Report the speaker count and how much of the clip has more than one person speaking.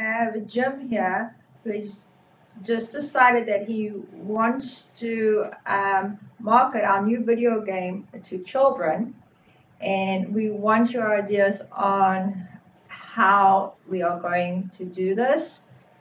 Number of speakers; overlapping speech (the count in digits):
1, no overlap